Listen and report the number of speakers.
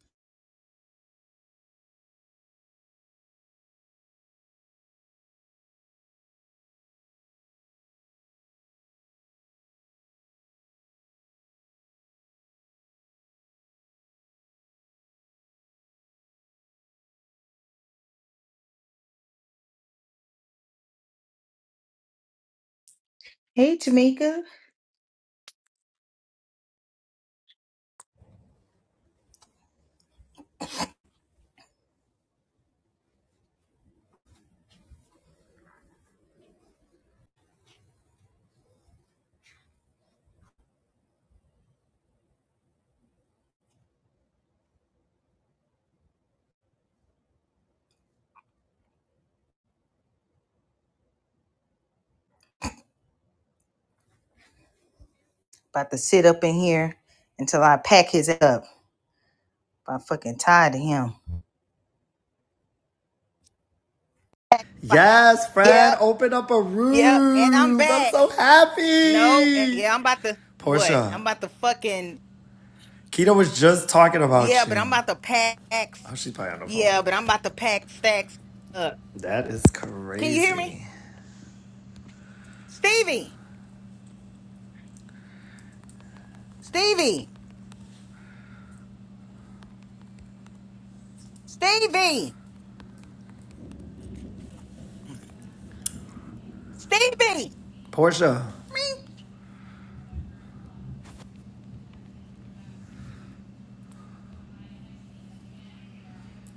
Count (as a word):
two